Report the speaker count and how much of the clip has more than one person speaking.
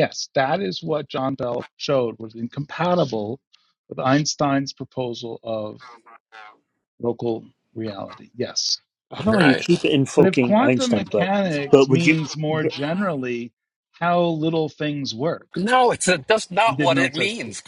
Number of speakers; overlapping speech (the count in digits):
3, about 20%